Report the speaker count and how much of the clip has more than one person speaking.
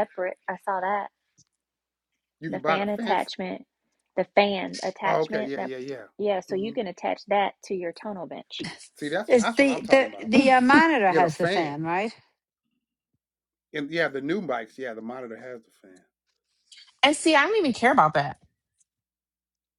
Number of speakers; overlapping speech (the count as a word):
four, about 16%